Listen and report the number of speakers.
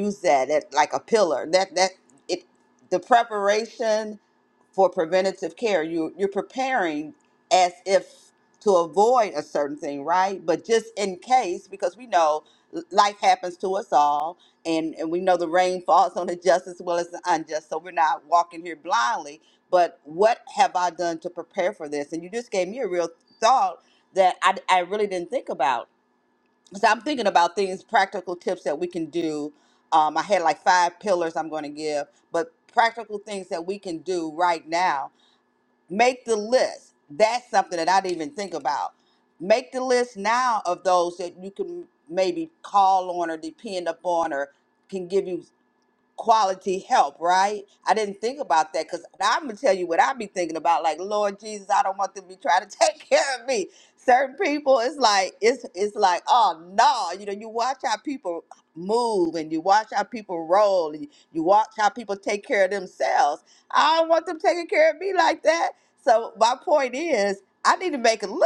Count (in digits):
1